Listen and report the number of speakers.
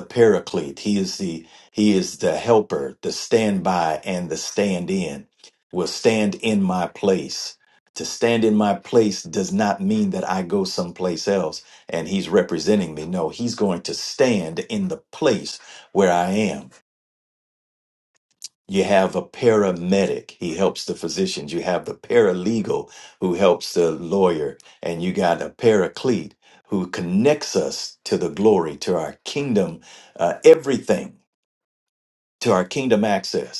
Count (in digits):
1